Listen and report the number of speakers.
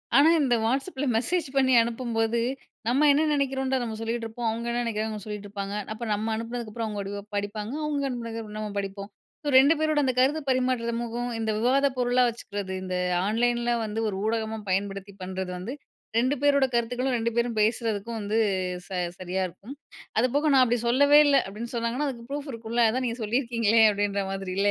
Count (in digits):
1